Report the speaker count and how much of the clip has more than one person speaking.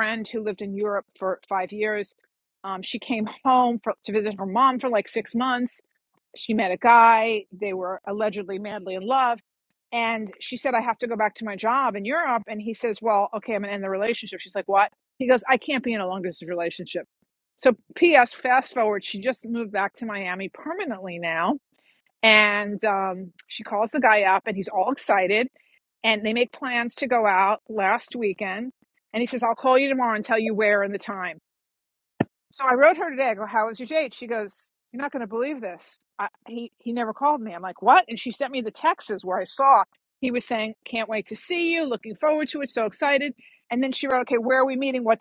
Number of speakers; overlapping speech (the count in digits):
1, no overlap